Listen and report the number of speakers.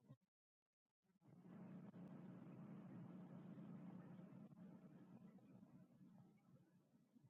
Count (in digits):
0